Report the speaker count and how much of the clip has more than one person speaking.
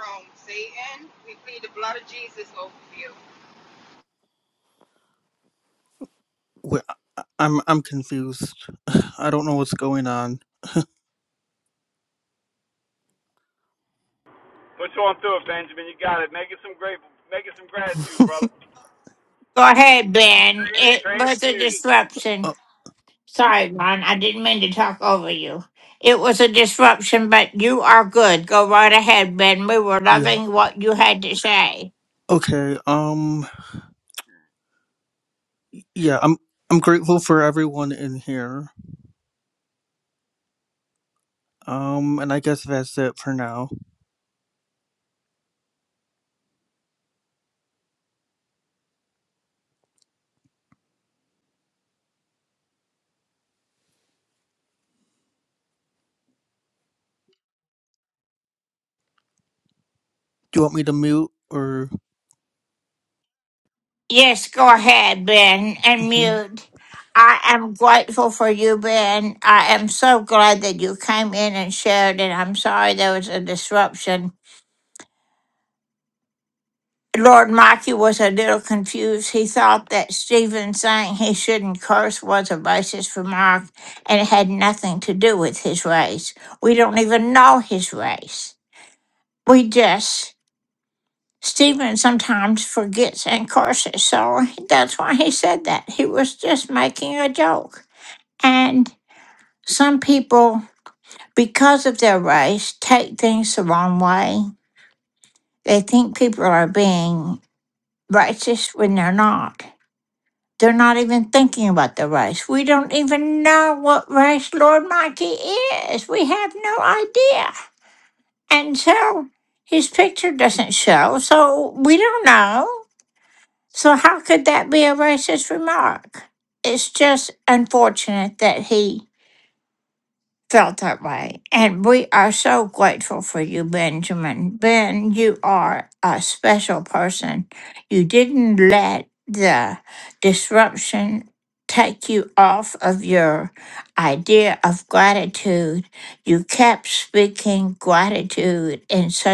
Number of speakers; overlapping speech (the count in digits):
4, about 2%